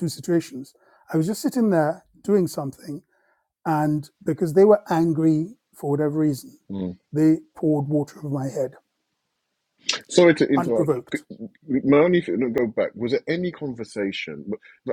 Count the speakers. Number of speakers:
two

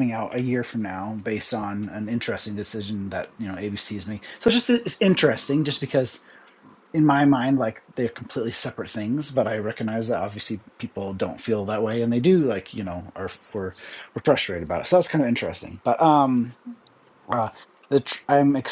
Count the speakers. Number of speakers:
one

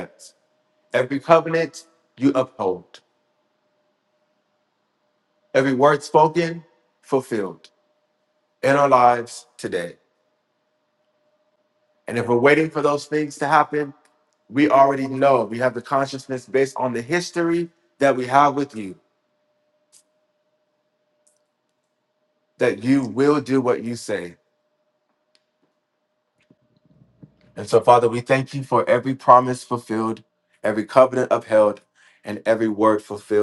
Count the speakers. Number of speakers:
one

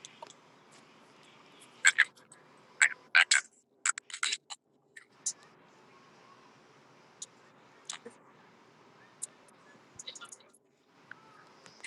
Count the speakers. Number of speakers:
zero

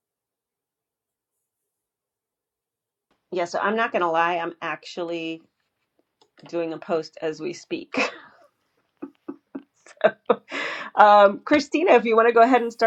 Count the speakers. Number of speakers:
one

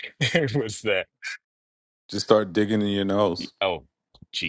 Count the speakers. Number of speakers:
two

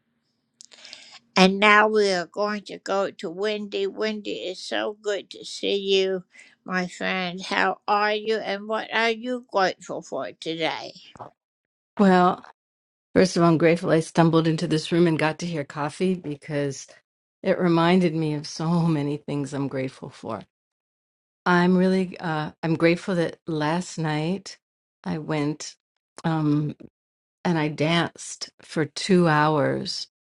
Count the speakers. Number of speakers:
two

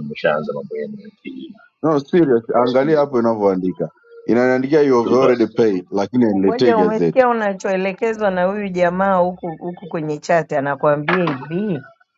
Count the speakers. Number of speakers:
three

